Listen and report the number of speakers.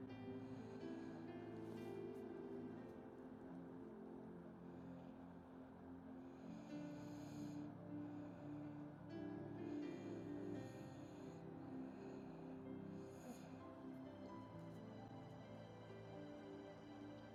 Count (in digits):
0